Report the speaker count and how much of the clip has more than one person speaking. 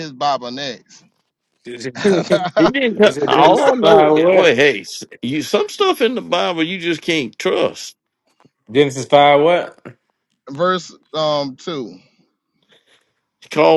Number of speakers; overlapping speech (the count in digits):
3, about 10%